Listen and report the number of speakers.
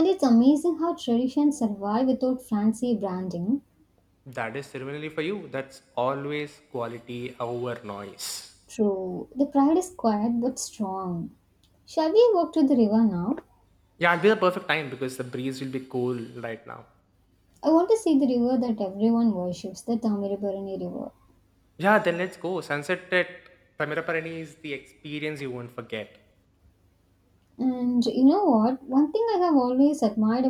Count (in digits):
2